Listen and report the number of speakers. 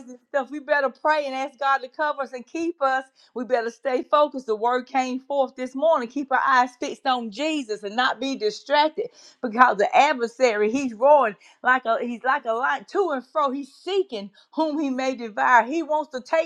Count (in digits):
1